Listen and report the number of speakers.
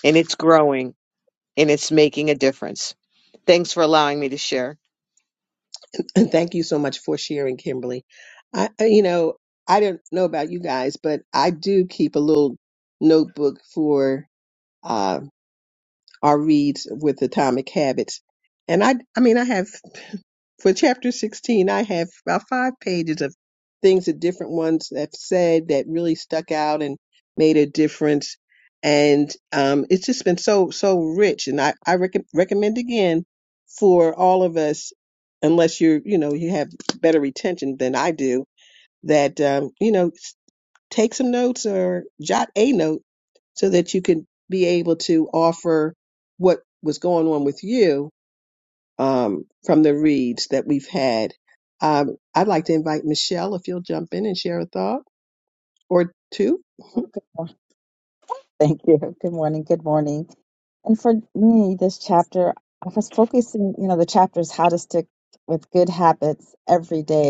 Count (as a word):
three